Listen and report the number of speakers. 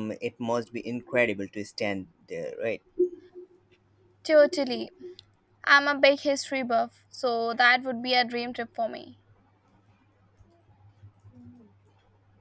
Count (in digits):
2